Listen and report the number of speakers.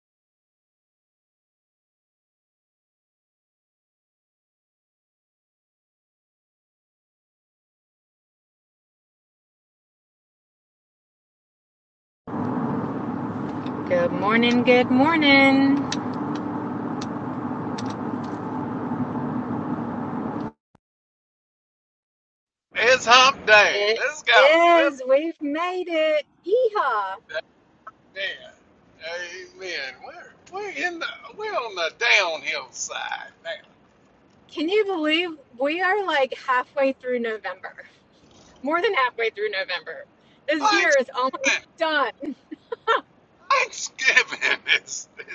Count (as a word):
two